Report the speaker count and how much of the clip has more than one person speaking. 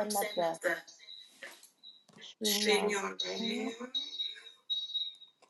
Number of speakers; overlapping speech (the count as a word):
one, no overlap